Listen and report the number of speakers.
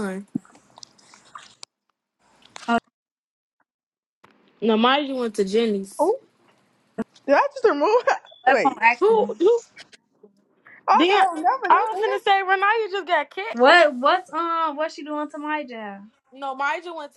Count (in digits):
3